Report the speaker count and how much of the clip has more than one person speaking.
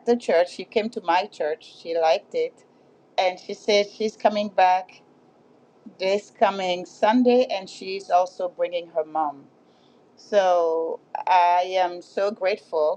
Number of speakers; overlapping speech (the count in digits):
1, no overlap